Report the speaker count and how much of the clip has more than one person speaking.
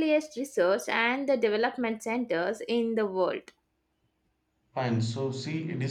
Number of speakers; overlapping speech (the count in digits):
2, no overlap